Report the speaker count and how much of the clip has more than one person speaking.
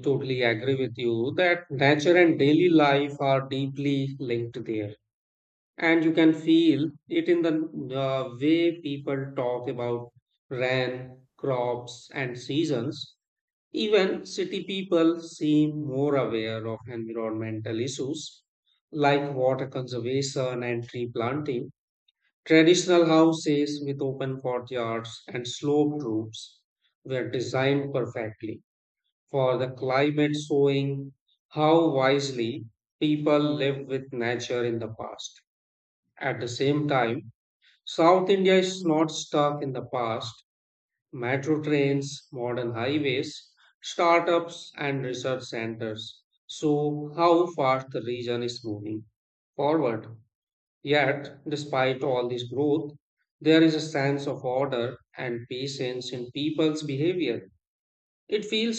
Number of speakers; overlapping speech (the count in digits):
1, no overlap